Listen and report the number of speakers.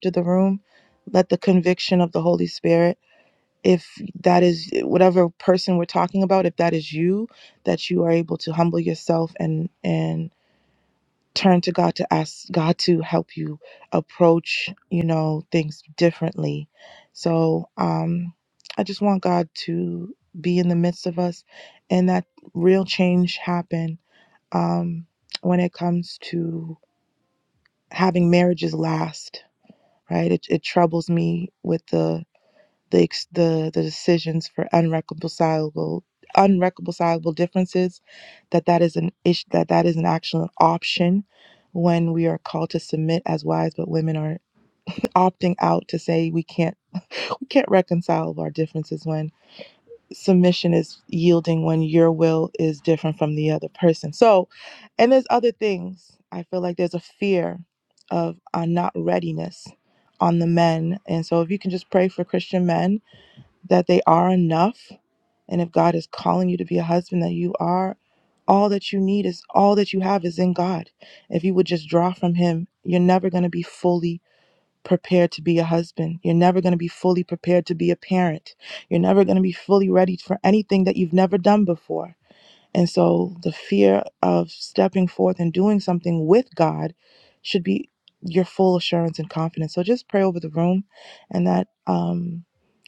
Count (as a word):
one